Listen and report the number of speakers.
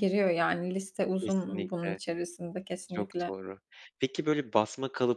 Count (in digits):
2